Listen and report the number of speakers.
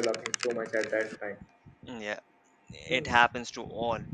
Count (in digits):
2